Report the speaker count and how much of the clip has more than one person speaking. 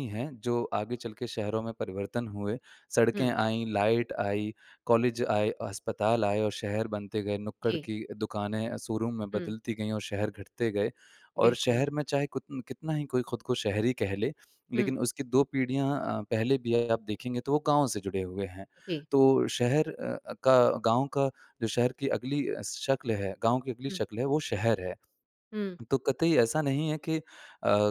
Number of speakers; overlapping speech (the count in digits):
2, about 4%